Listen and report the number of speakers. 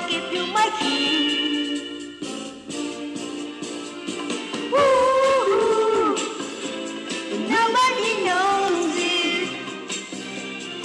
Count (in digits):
1